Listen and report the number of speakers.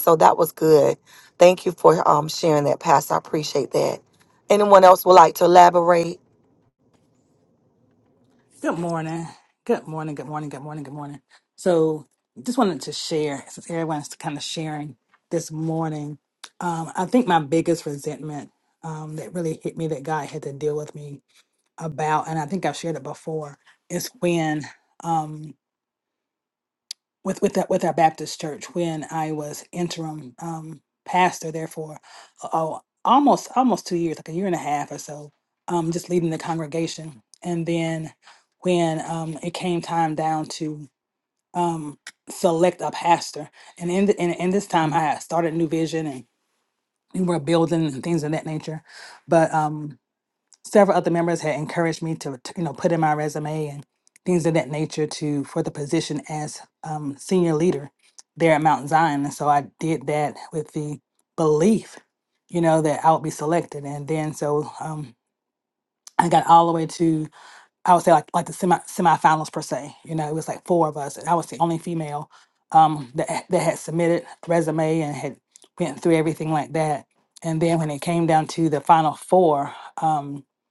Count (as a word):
two